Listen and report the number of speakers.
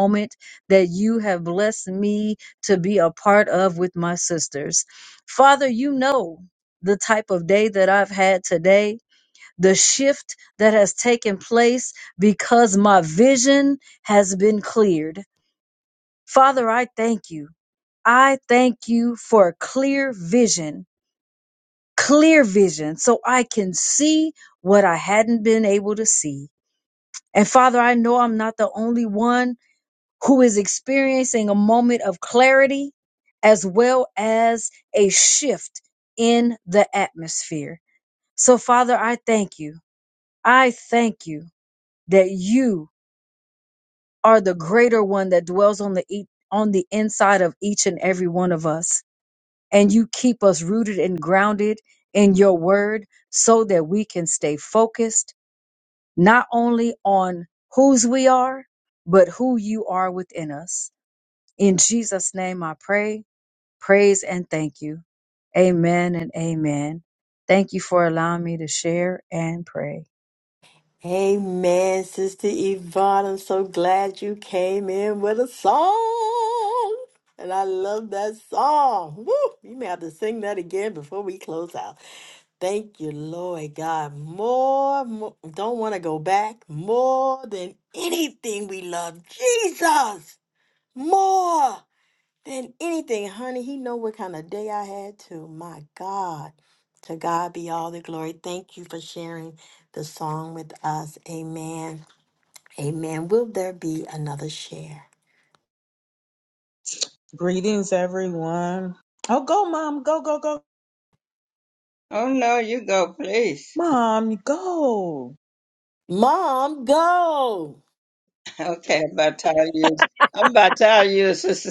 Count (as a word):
four